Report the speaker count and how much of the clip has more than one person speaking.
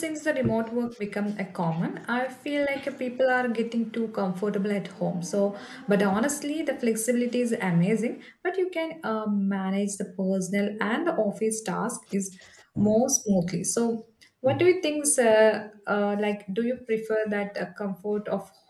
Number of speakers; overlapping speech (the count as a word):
one, no overlap